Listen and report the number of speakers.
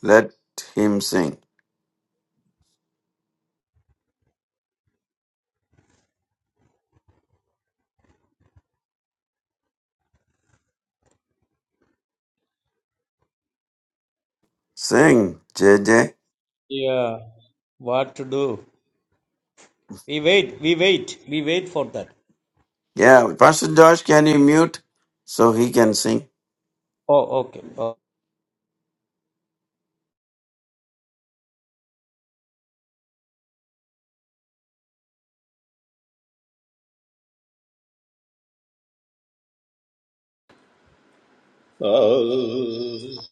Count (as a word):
three